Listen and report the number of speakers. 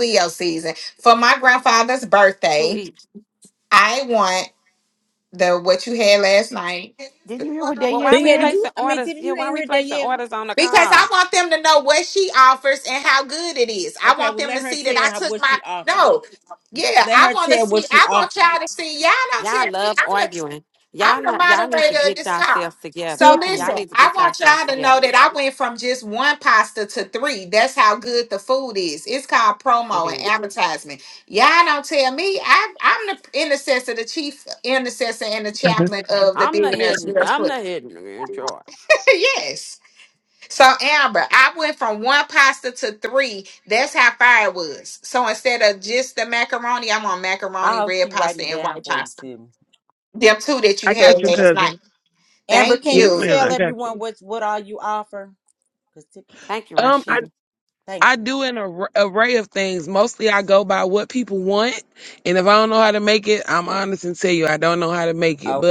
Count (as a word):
five